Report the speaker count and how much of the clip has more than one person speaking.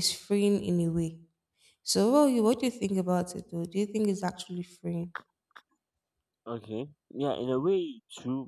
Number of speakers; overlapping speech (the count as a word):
two, no overlap